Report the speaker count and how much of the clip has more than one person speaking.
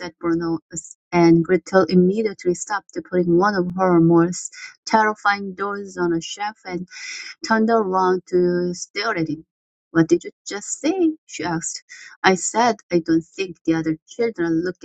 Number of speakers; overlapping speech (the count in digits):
1, no overlap